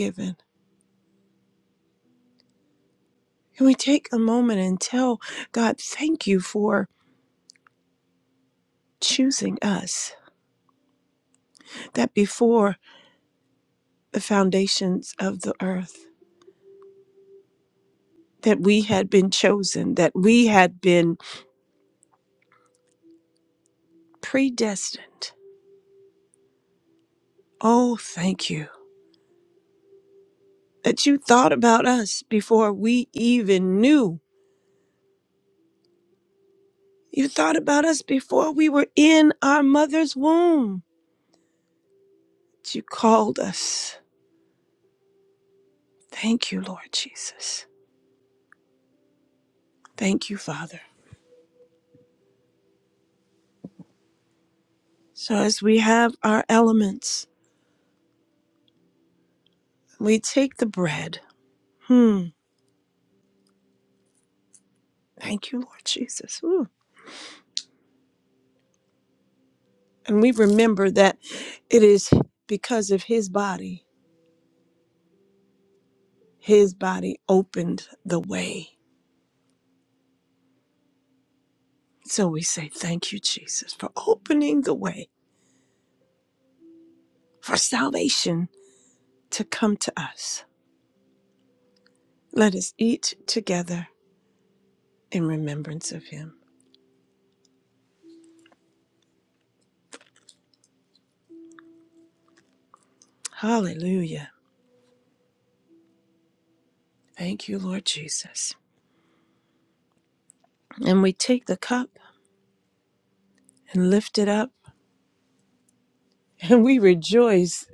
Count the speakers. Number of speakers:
one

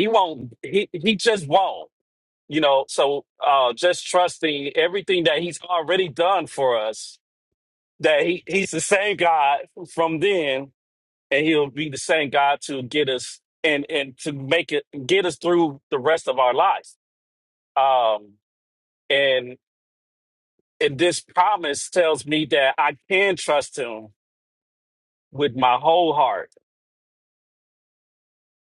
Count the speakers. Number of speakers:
one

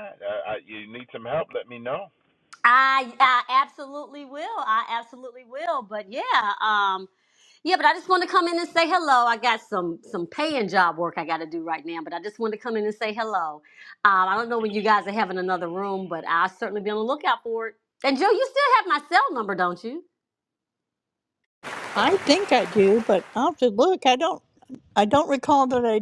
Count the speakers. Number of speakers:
three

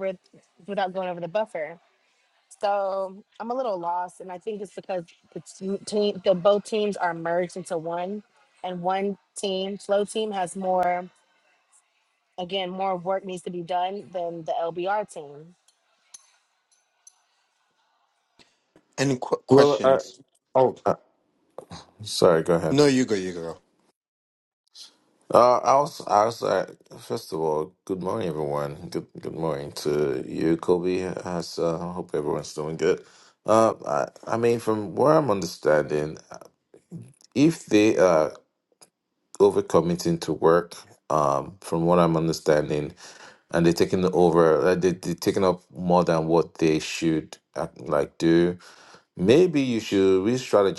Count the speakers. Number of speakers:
three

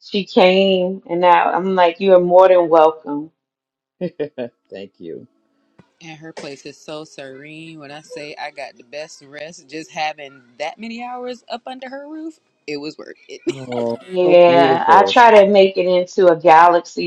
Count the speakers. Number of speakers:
three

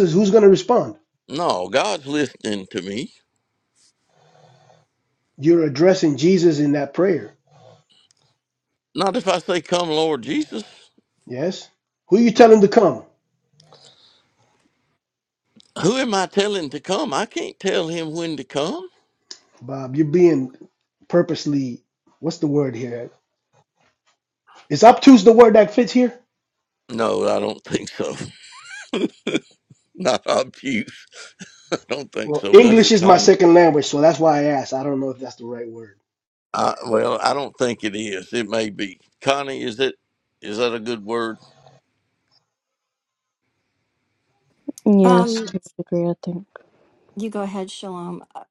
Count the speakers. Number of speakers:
four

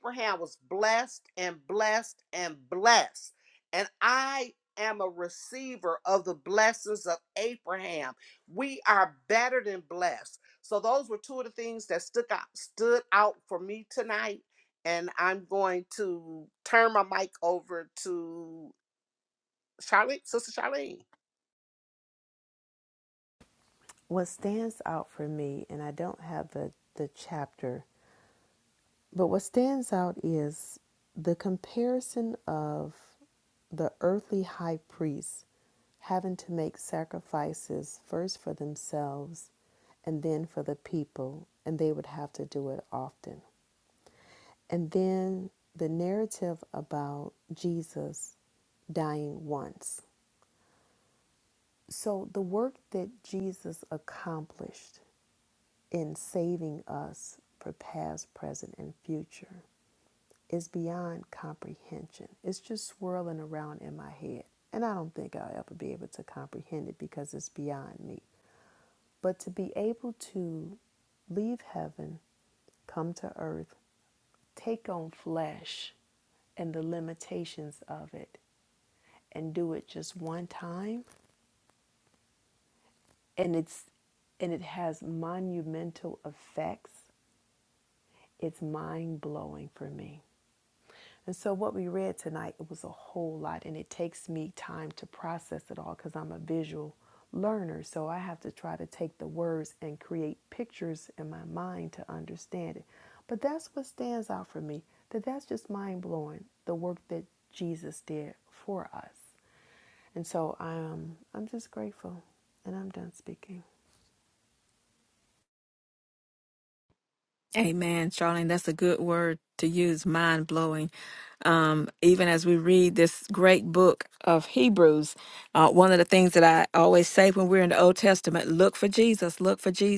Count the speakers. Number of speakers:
three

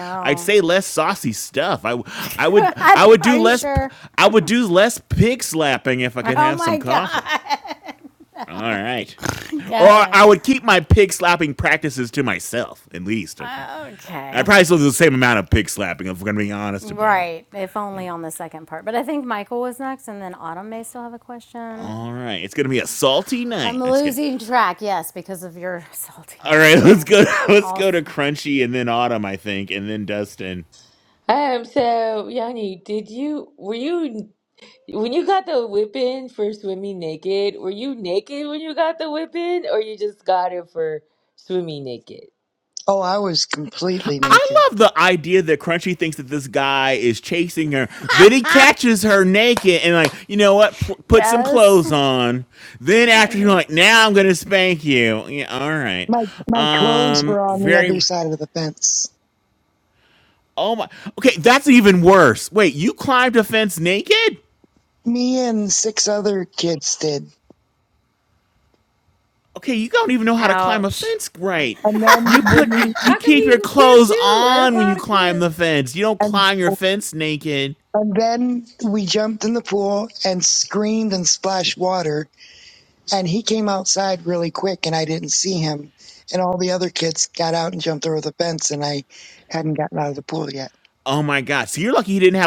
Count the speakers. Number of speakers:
four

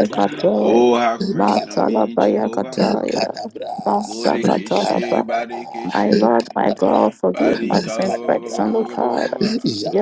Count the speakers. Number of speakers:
three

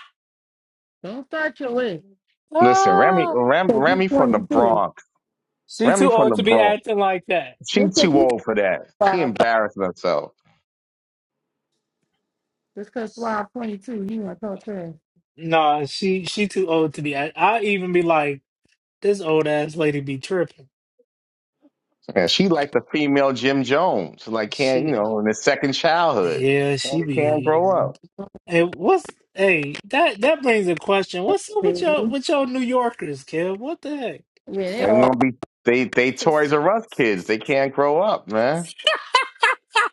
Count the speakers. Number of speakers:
three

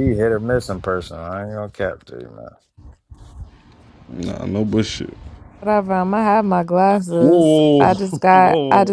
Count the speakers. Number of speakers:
three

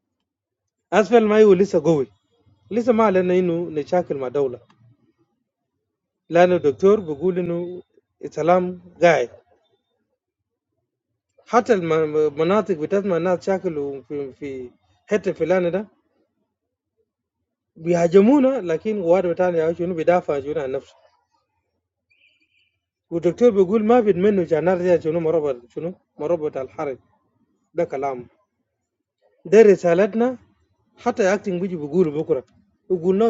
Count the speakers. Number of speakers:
one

